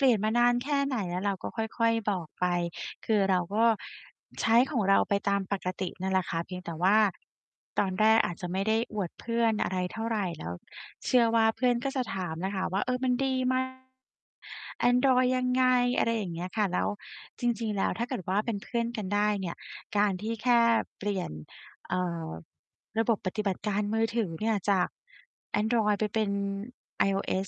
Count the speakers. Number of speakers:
1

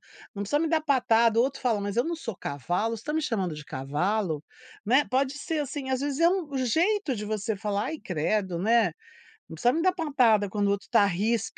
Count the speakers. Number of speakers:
1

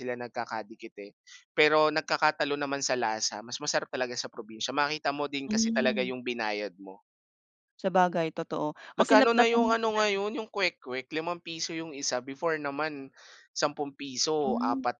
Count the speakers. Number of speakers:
2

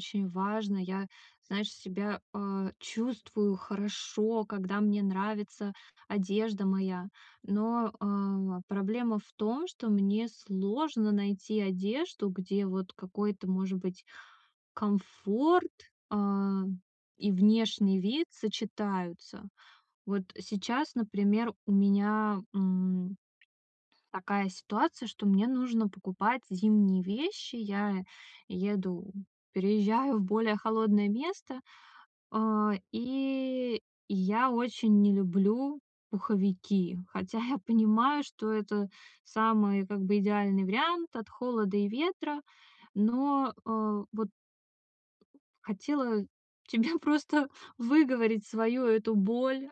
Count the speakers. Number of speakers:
1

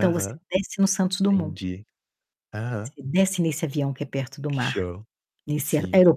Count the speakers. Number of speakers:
2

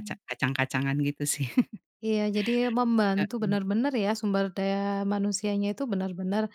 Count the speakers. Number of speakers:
2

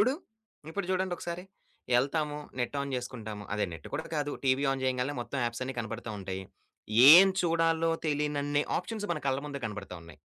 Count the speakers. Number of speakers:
1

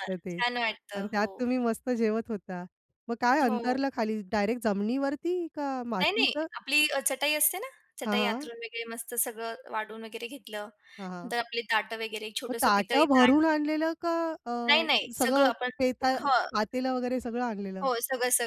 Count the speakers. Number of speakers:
2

